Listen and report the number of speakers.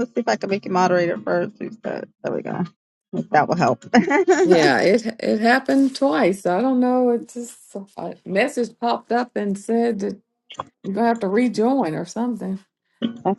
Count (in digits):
2